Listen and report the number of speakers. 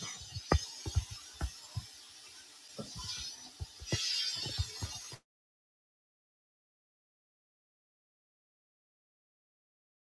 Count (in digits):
0